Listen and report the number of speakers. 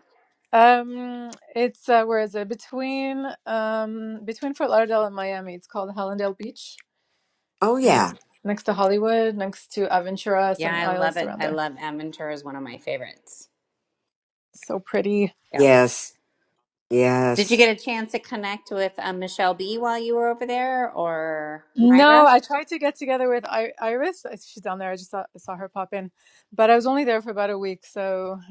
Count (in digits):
3